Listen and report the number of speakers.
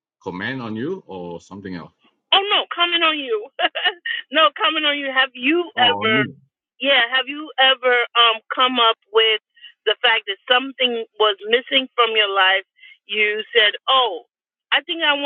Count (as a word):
two